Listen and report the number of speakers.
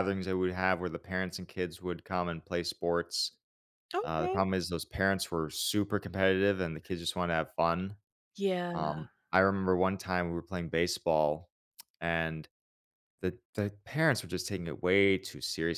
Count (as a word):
two